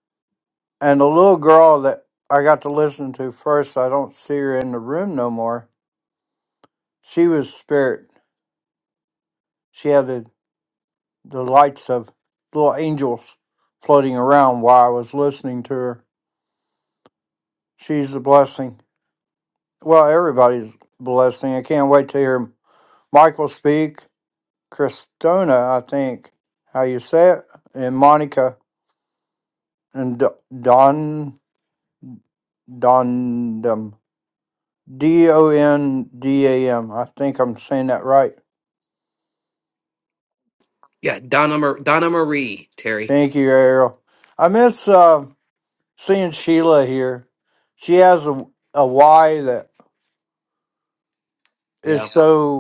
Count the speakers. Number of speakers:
two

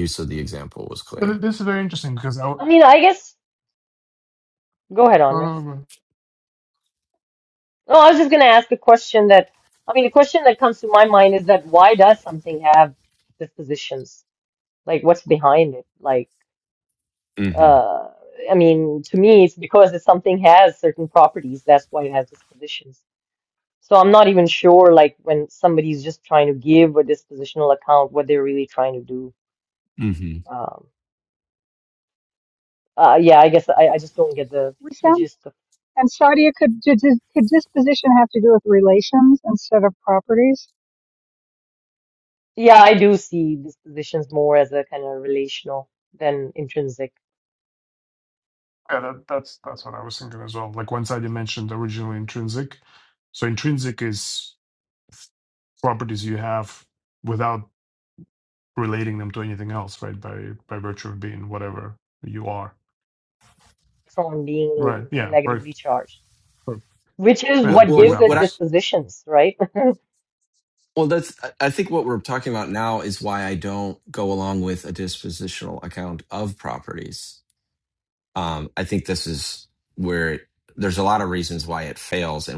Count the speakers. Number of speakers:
four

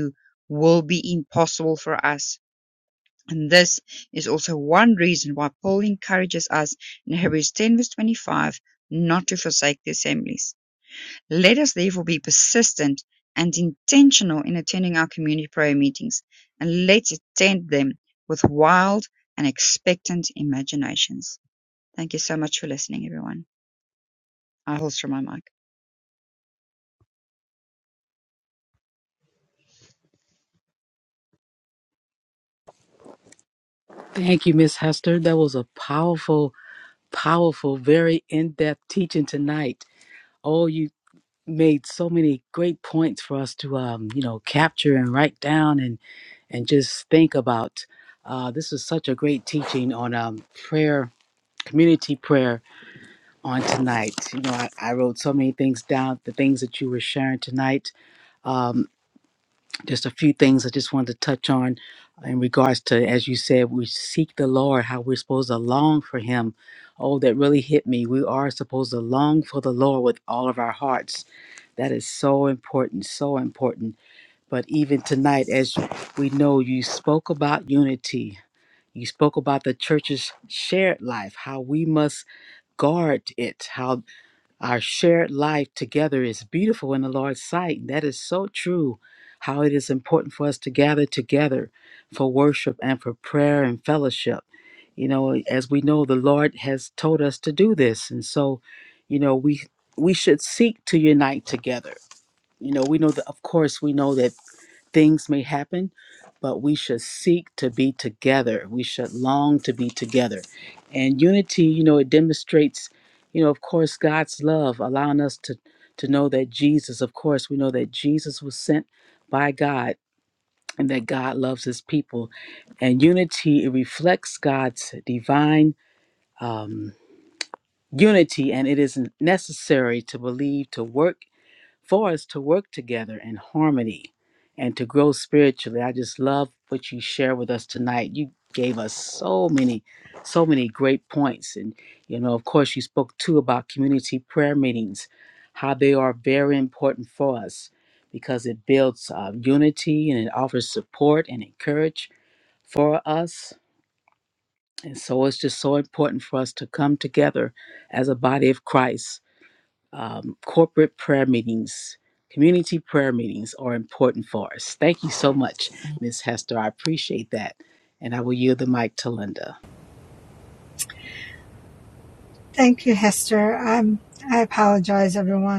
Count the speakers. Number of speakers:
three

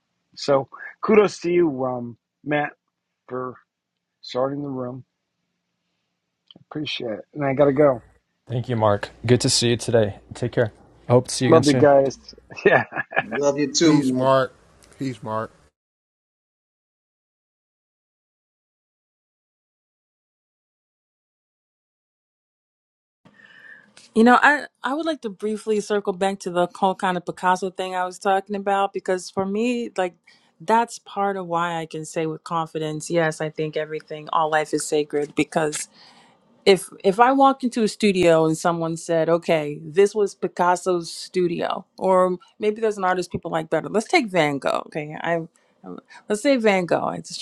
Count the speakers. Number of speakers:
five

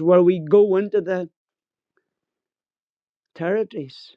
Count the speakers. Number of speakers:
one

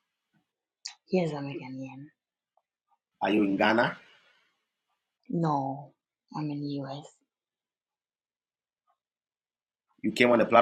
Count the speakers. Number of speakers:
two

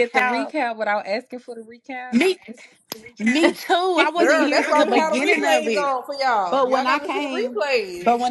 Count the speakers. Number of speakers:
three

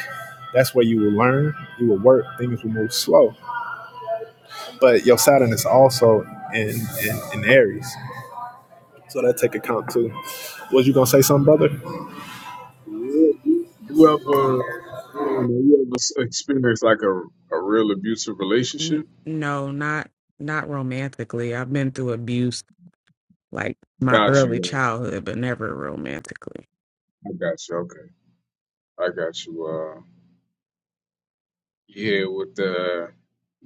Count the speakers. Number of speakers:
three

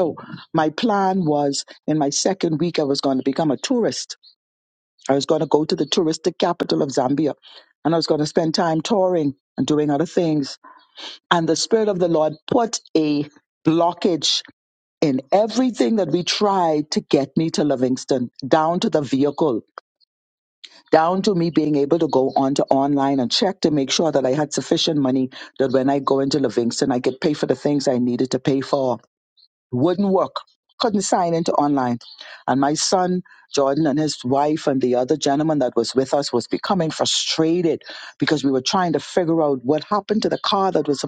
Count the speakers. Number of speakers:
one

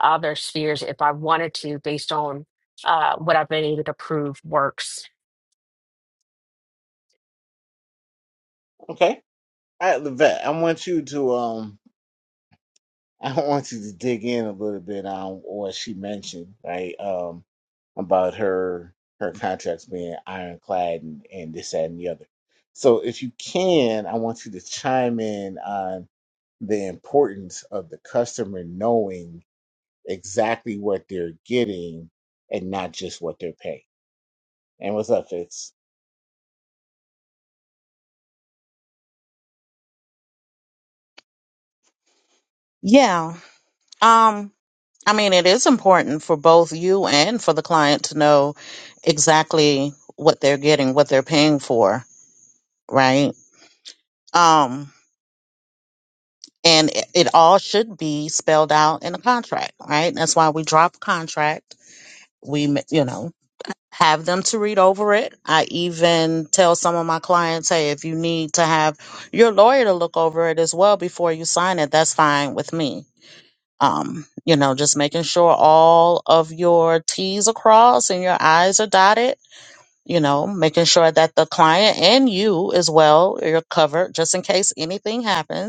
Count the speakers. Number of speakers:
three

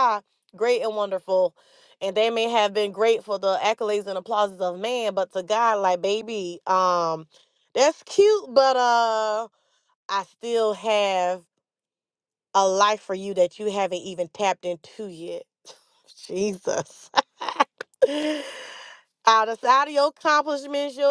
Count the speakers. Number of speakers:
one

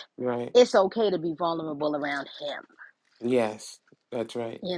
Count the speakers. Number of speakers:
two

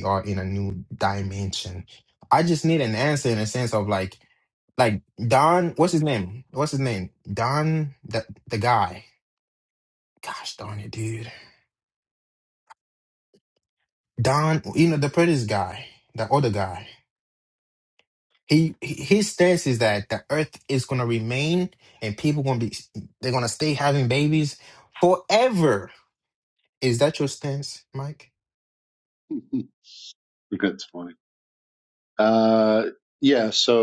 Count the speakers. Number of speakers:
two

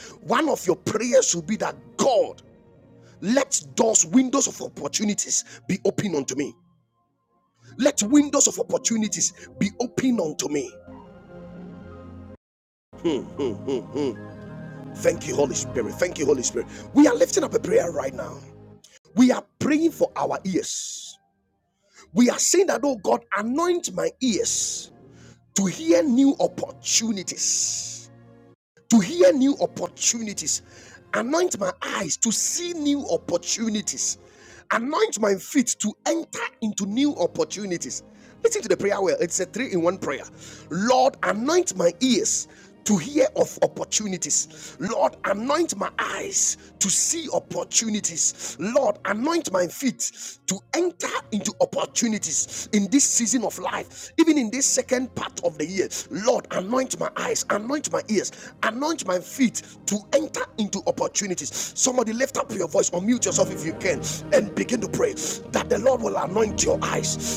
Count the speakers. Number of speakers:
one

